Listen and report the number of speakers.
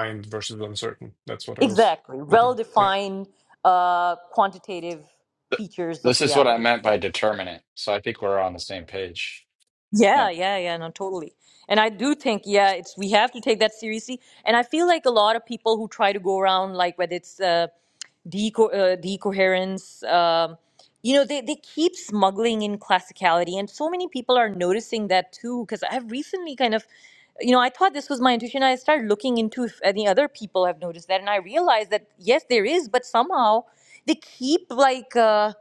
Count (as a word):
three